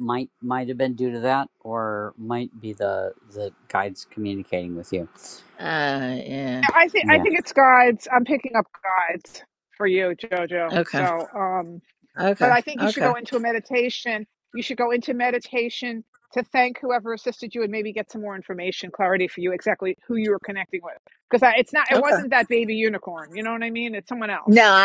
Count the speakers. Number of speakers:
3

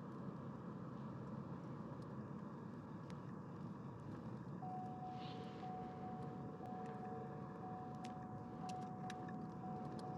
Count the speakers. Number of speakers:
0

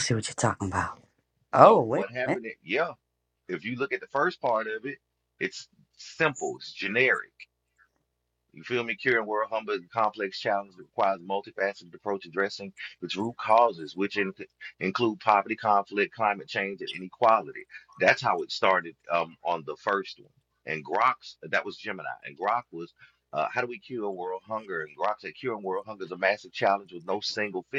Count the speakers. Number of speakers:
2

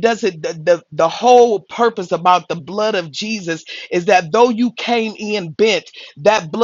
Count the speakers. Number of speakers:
1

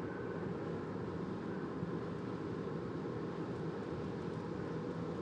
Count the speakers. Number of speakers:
0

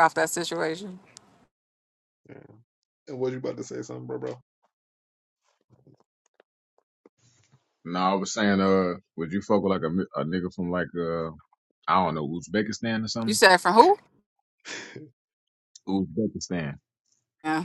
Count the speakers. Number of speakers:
3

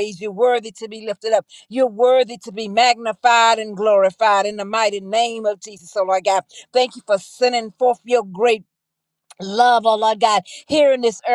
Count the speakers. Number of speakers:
1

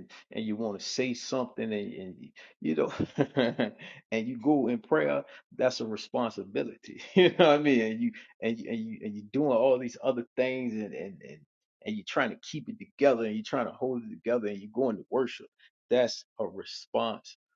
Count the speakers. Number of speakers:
1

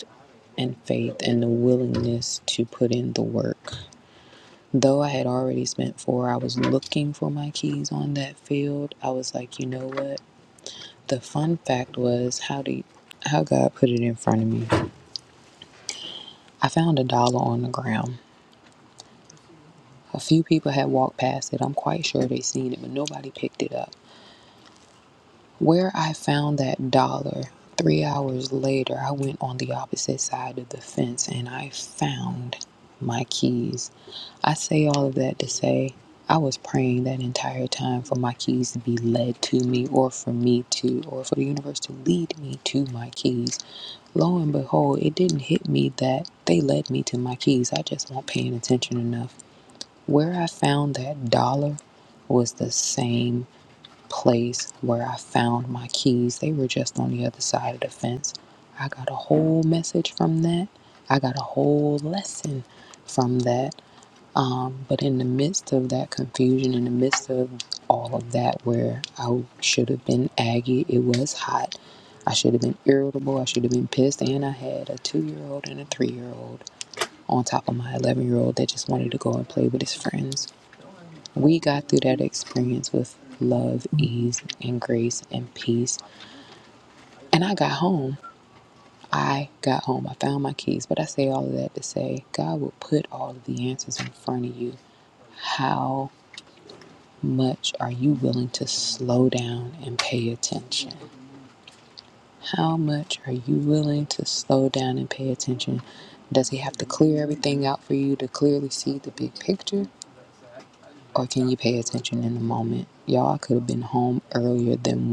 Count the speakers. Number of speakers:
1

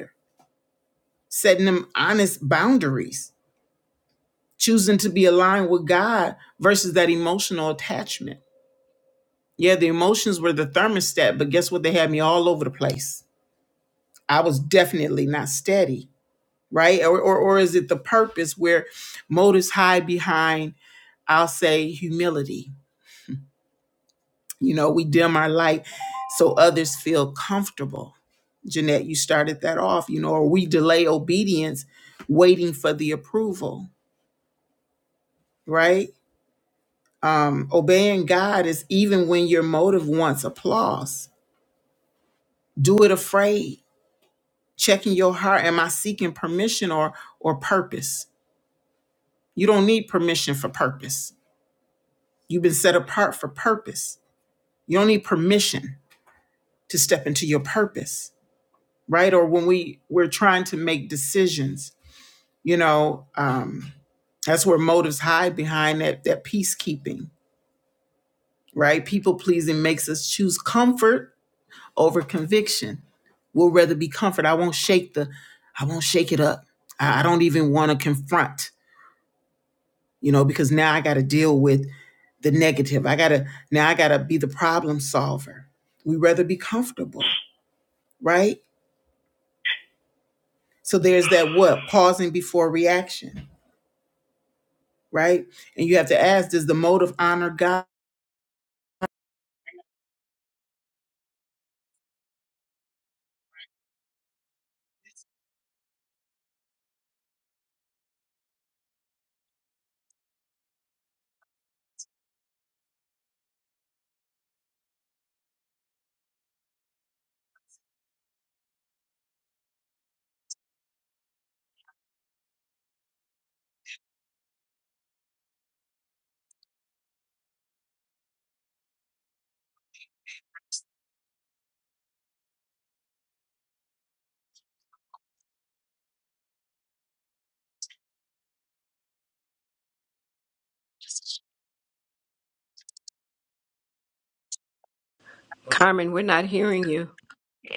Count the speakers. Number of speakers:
2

